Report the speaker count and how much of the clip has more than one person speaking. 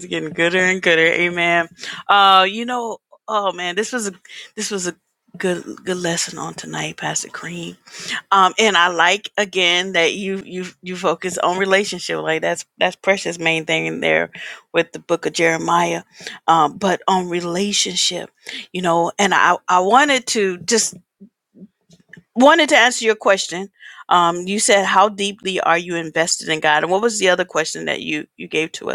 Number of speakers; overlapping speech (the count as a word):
one, no overlap